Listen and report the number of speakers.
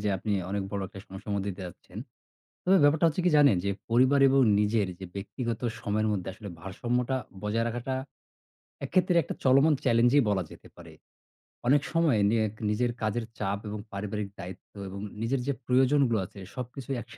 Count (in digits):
1